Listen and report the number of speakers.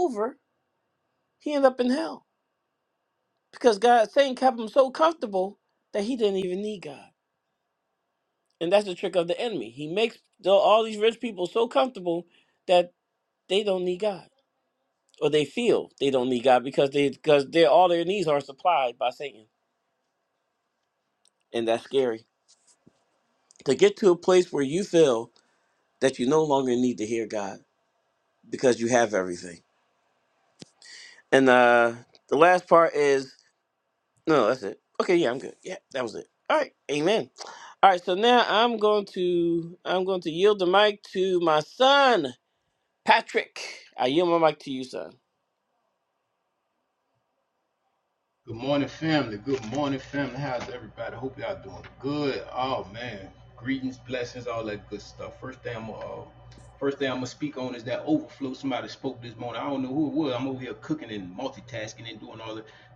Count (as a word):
two